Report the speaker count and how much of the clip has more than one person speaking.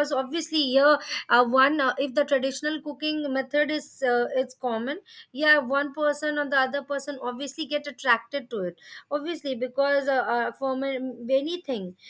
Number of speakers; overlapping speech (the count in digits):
1, no overlap